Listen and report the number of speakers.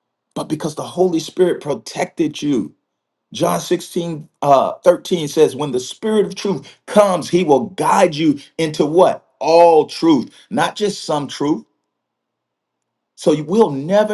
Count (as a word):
one